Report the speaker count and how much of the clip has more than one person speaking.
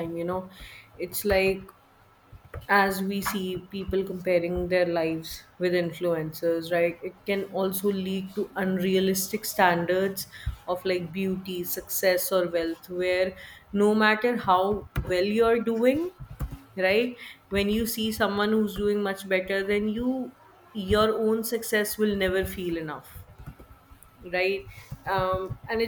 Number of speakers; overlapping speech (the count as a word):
one, no overlap